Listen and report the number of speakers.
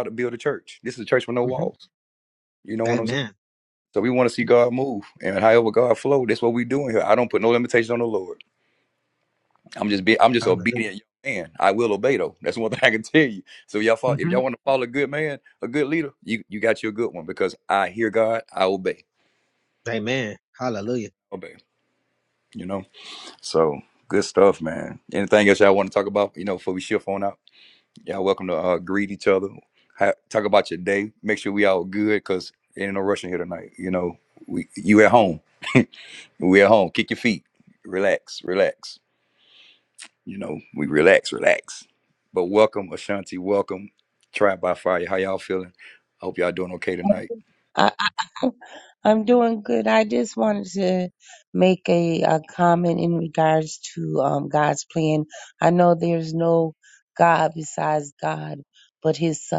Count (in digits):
3